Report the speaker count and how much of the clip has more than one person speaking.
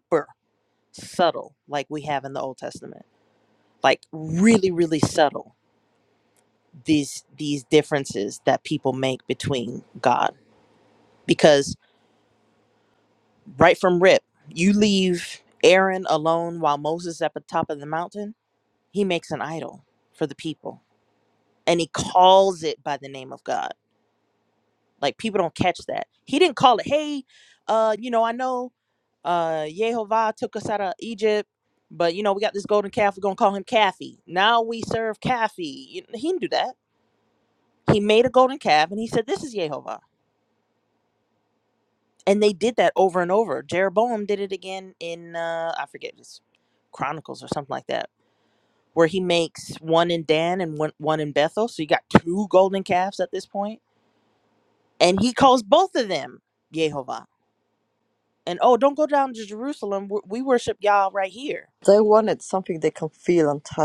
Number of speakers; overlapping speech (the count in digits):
2, no overlap